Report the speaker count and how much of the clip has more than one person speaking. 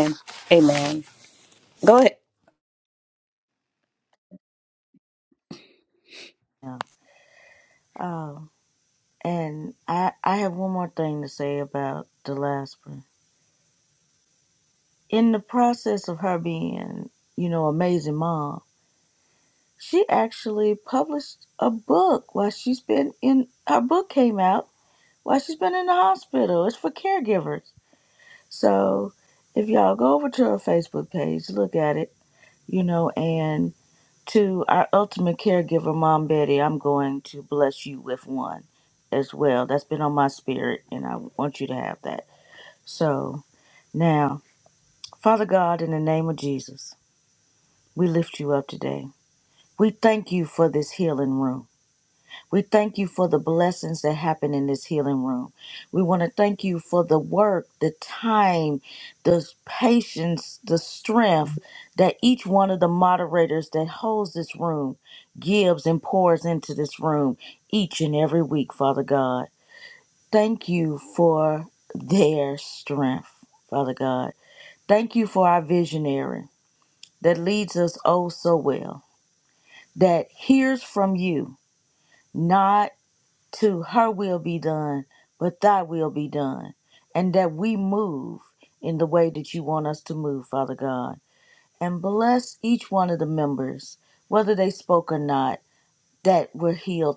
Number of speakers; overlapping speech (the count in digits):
2, no overlap